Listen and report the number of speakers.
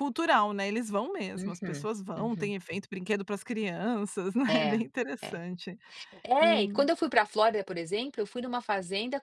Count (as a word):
two